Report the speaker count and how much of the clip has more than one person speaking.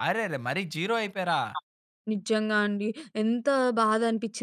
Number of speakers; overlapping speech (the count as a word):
two, no overlap